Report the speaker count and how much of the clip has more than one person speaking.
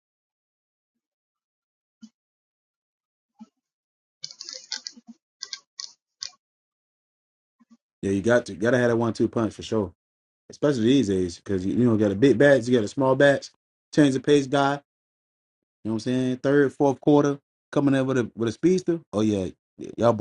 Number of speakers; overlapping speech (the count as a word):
one, no overlap